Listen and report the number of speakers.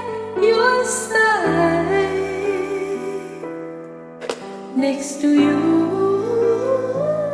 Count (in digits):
1